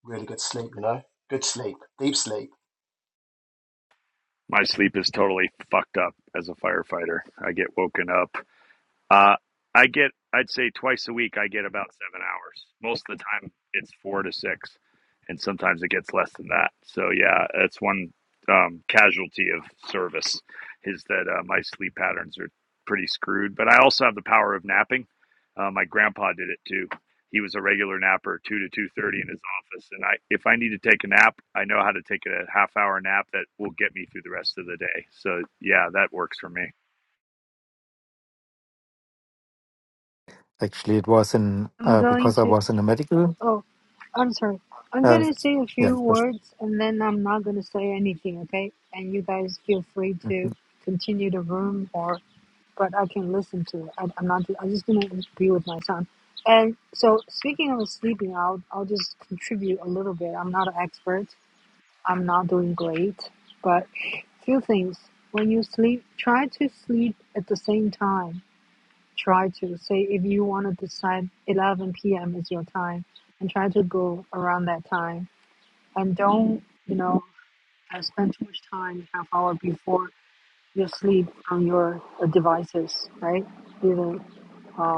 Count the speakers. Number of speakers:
four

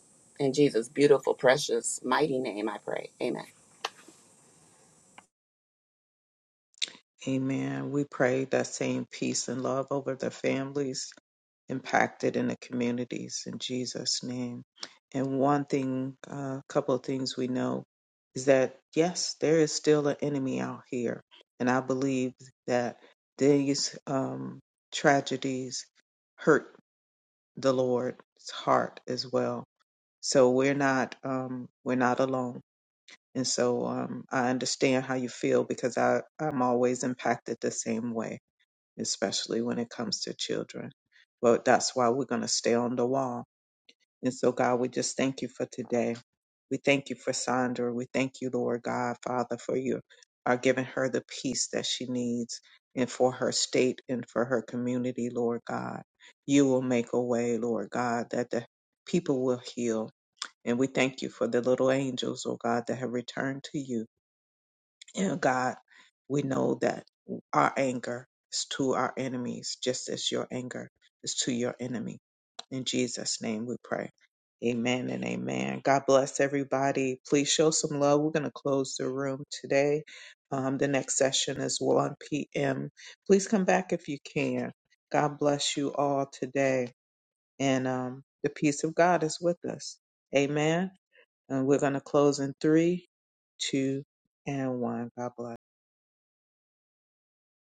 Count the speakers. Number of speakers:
two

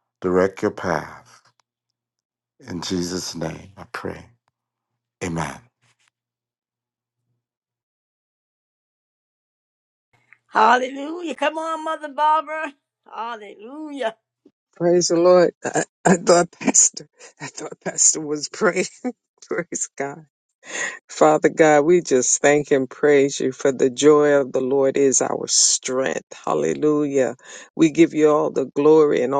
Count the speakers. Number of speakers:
three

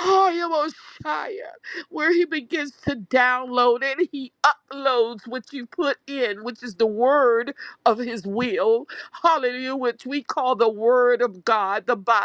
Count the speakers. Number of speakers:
one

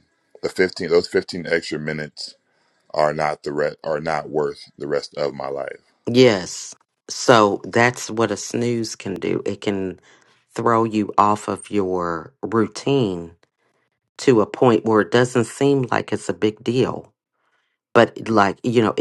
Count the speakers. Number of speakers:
two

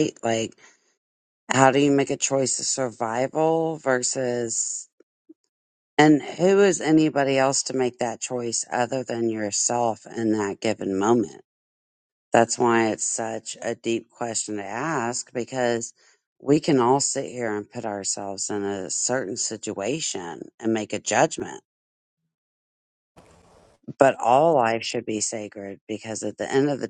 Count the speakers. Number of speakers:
one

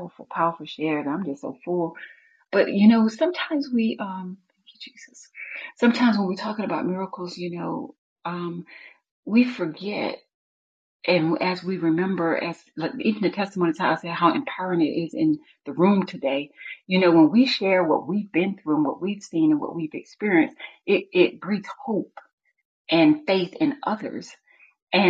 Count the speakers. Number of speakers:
one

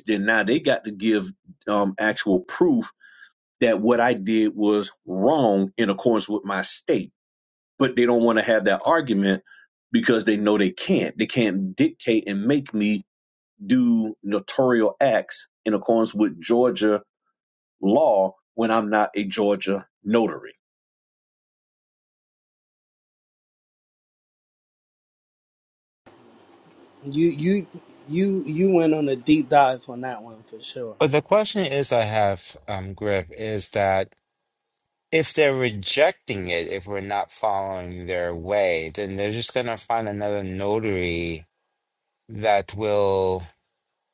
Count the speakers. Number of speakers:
three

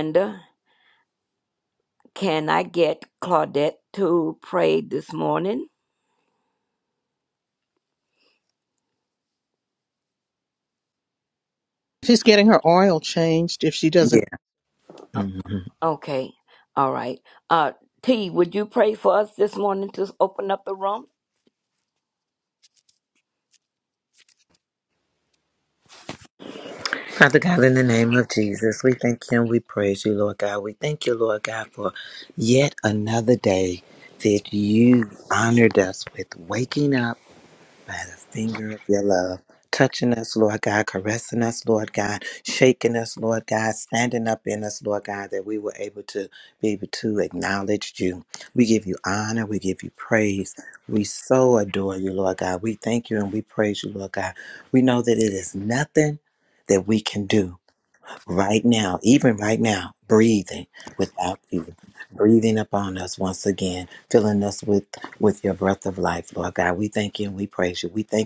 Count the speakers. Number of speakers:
three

